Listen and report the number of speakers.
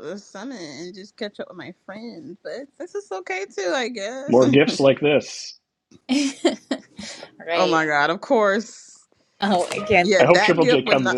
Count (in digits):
3